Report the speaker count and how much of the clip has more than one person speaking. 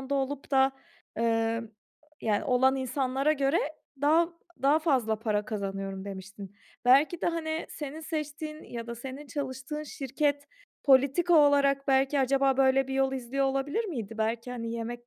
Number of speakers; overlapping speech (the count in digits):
1, no overlap